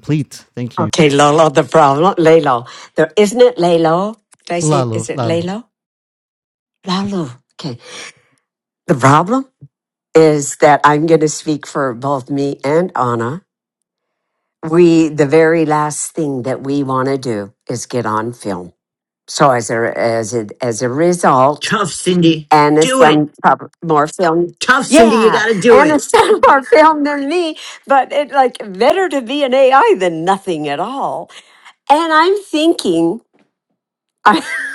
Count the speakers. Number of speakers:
three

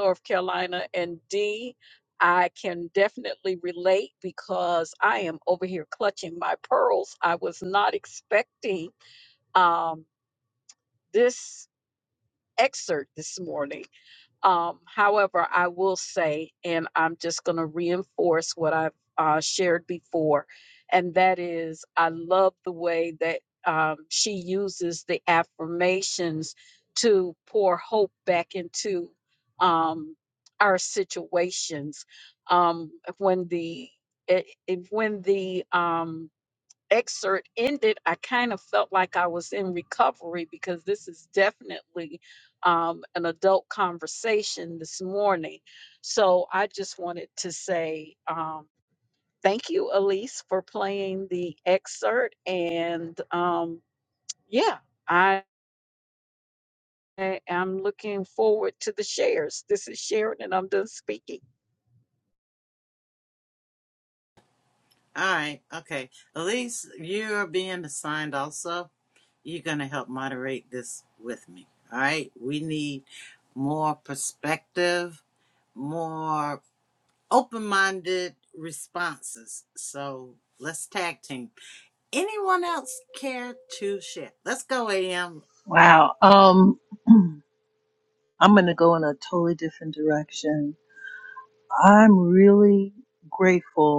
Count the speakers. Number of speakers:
three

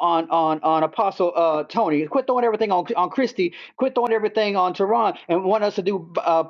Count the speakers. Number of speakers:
one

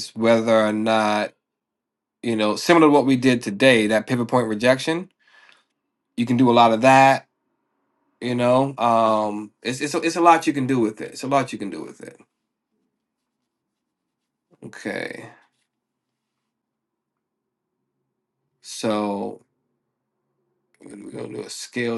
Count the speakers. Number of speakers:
one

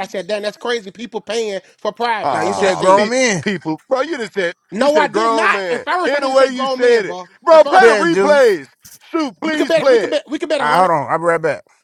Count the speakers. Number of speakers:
three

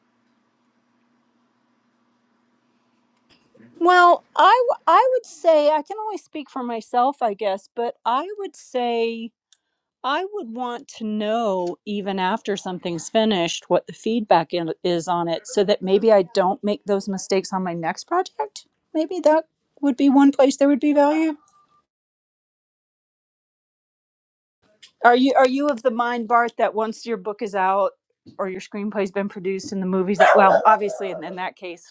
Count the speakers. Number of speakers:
one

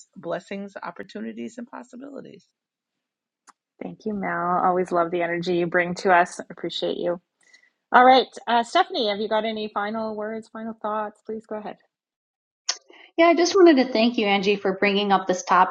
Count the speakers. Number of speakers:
three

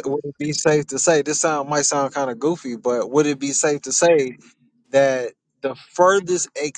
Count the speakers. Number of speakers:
one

